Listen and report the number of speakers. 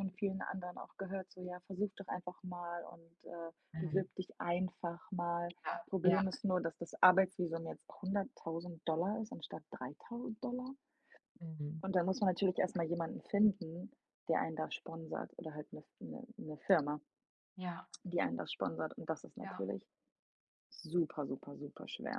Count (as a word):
two